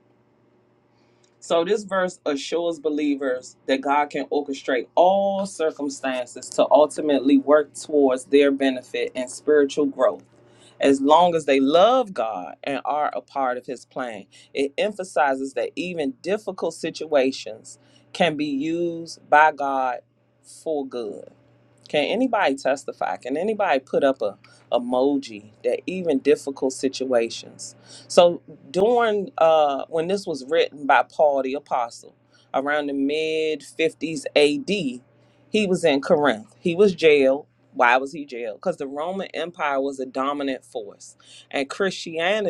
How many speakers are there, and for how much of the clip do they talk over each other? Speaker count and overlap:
one, no overlap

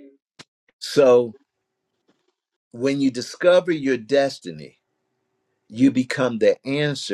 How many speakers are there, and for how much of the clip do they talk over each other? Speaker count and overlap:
one, no overlap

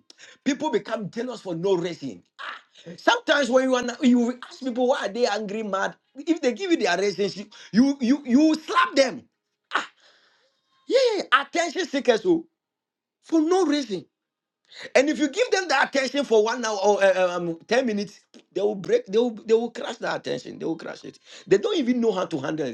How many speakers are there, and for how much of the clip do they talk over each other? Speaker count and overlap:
one, no overlap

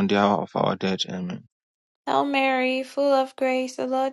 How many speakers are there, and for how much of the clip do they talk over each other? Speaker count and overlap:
two, no overlap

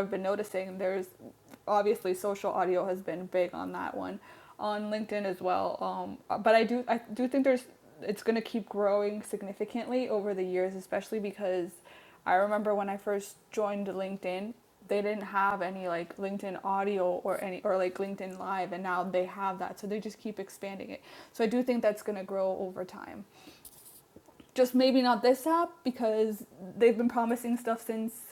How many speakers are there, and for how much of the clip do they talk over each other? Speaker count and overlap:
one, no overlap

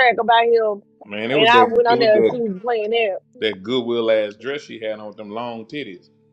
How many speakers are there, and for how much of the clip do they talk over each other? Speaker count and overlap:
two, about 17%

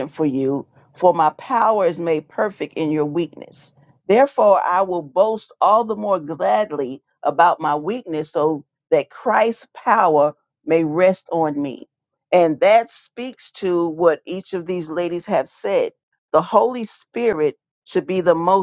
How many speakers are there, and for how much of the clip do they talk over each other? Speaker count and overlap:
one, no overlap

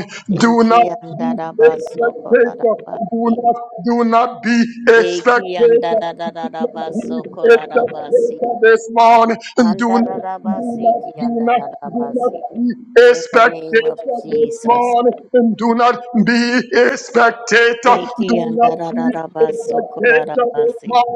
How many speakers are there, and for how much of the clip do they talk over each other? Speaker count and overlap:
two, about 42%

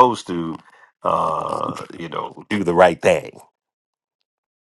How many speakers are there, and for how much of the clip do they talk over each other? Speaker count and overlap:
one, no overlap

